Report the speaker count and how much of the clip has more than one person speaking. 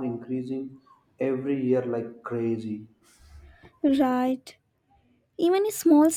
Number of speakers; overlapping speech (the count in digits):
2, no overlap